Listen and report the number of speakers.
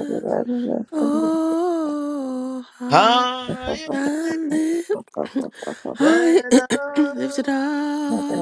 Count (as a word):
three